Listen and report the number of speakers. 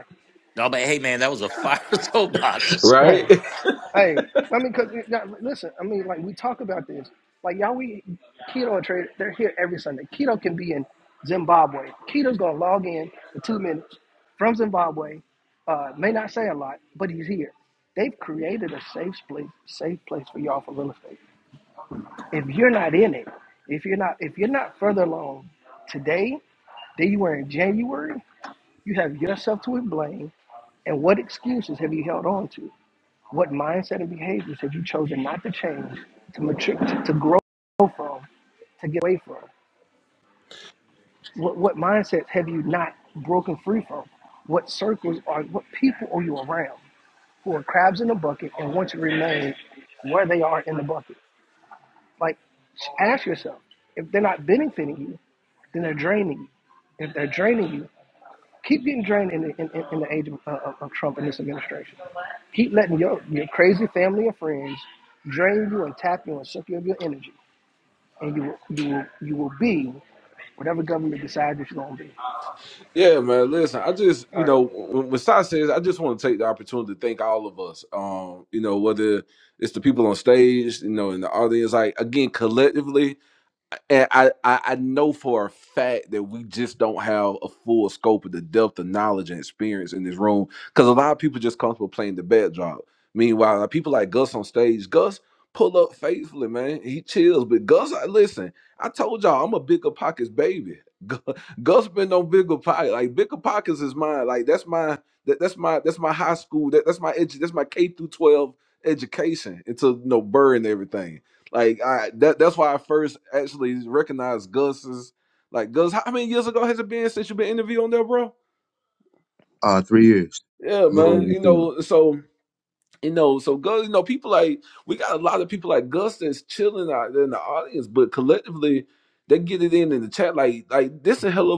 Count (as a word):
four